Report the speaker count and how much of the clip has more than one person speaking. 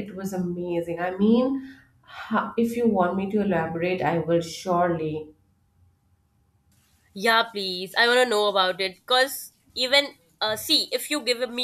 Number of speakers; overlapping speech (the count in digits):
2, no overlap